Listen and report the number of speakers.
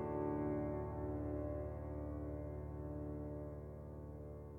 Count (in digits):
0